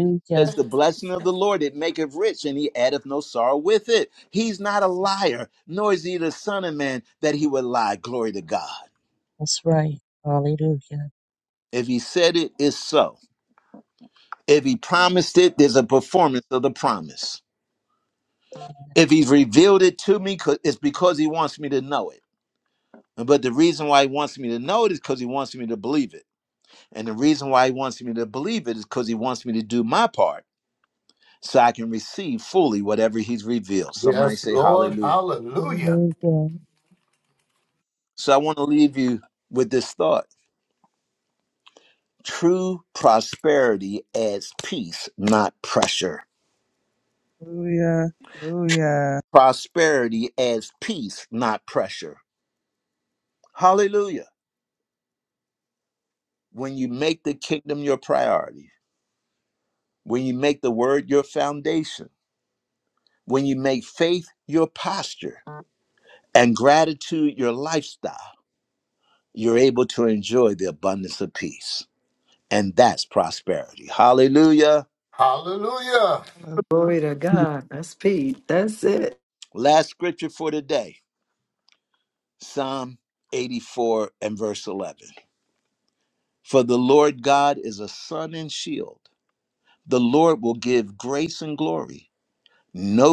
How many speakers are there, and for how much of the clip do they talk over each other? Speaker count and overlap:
five, about 2%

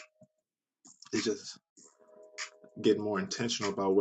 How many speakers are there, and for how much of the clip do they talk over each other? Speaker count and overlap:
one, no overlap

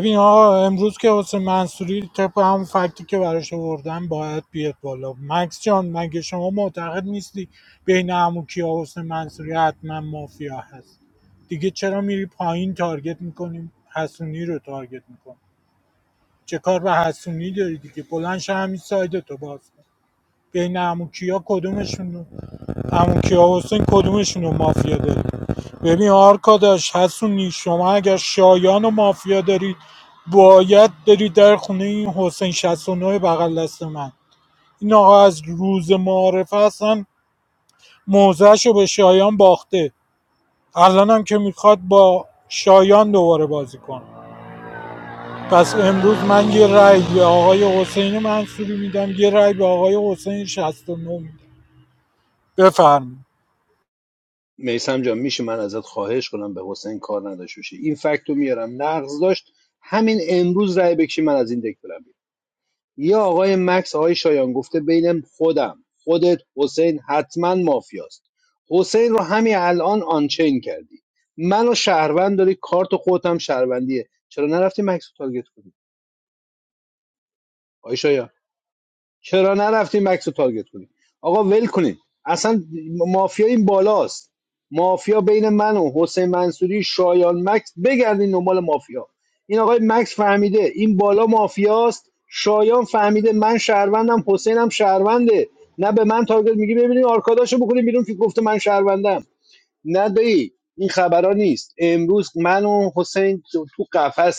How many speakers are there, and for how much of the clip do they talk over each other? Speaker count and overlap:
two, no overlap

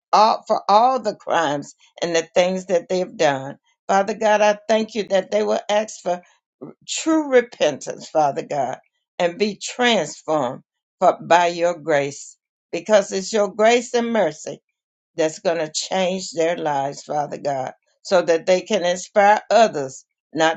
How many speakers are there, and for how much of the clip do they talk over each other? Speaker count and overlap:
one, no overlap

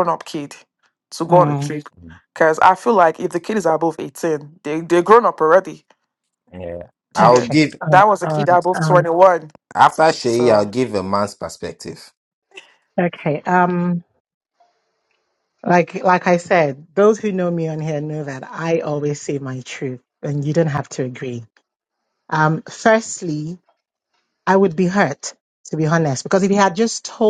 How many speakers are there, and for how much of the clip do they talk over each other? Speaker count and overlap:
three, about 8%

